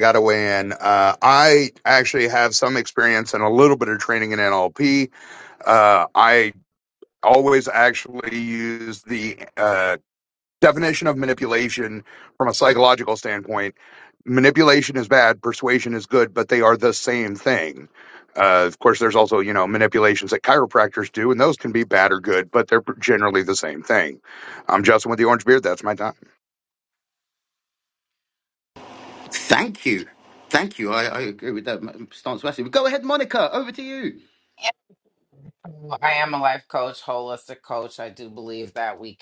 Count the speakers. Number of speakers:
three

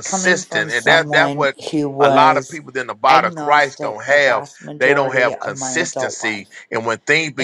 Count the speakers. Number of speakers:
two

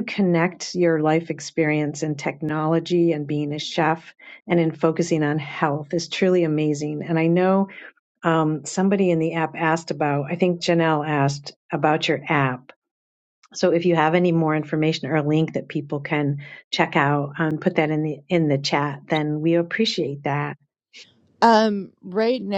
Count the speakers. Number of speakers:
two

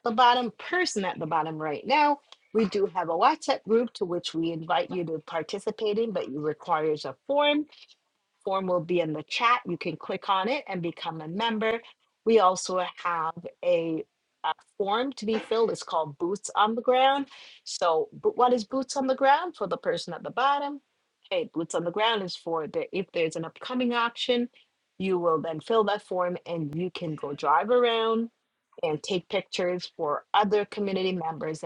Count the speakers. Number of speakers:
one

